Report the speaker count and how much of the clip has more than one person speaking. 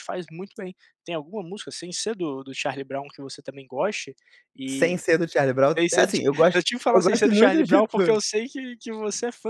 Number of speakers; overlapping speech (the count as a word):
two, about 28%